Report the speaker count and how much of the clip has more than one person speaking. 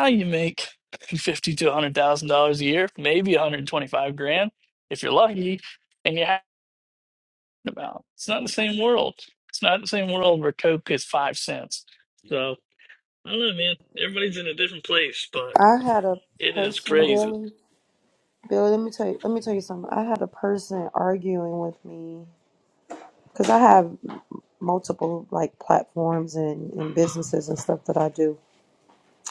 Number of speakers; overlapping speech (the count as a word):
two, about 3%